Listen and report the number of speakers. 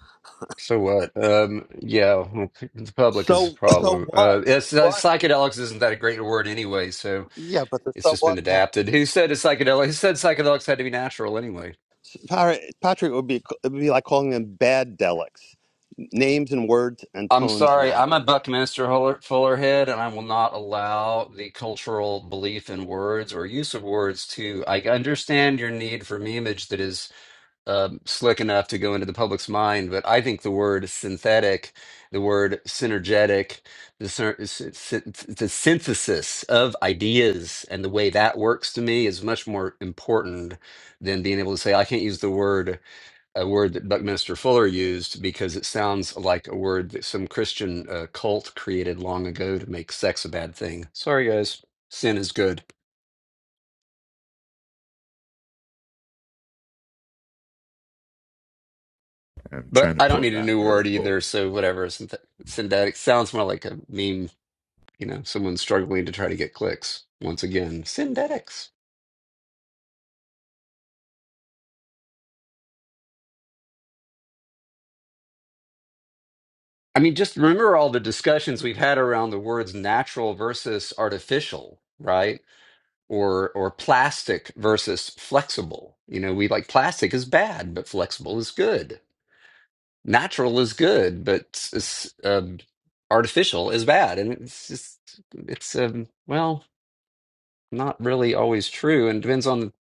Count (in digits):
2